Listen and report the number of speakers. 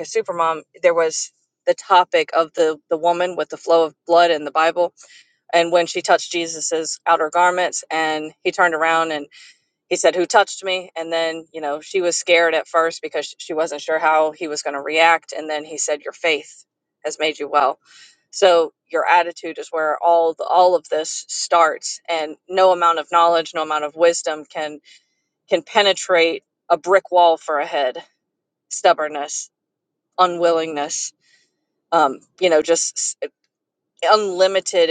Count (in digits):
1